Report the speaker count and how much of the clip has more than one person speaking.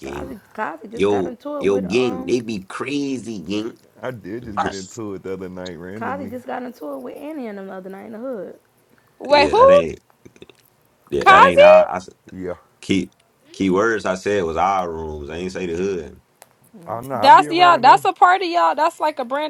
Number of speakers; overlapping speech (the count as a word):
four, about 20%